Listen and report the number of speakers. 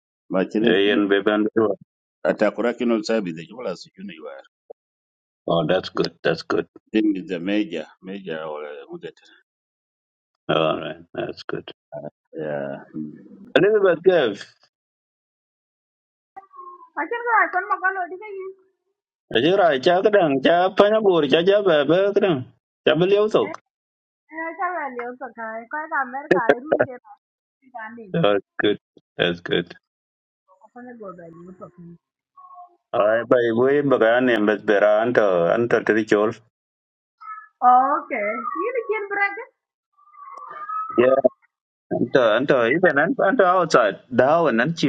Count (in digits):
3